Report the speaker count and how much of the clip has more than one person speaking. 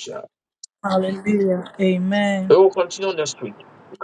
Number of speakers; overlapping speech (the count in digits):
2, about 2%